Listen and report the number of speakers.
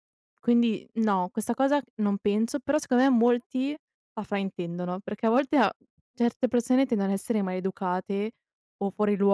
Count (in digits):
1